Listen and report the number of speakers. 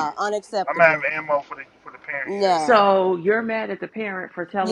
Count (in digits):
3